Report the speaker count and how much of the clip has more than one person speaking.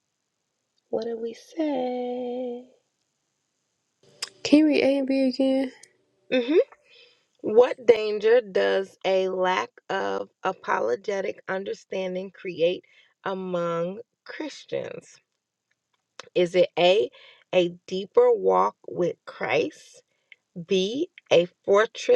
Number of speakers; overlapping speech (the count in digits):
2, no overlap